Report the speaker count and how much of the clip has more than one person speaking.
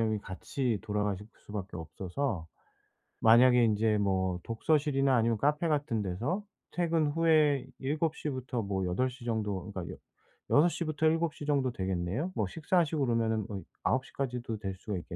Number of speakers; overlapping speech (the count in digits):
1, no overlap